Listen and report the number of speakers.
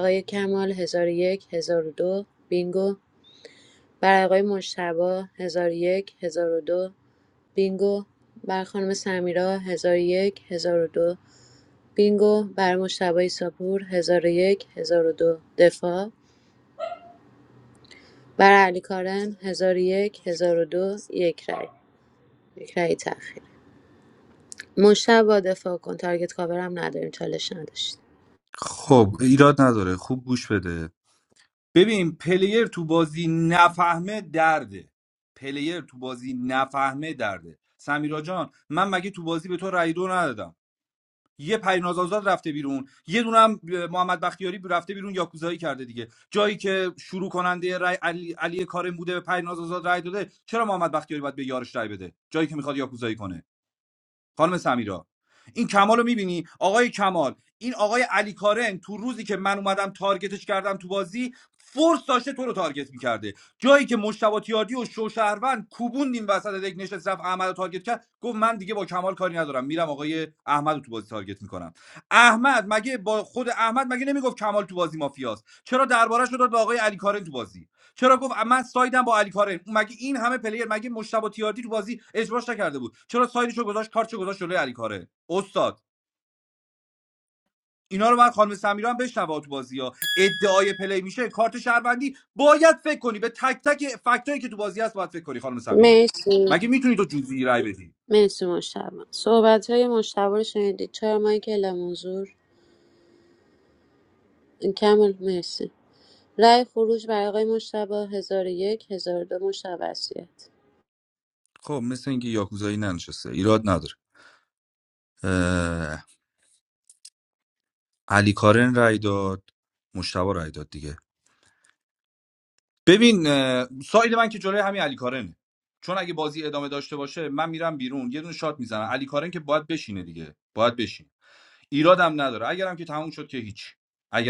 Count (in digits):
2